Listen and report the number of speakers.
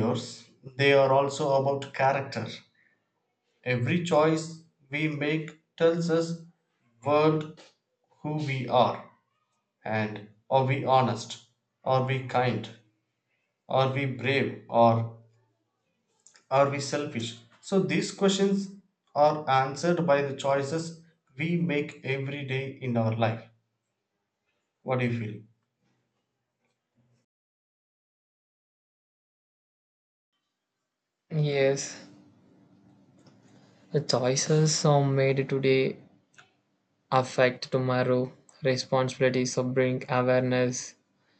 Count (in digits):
2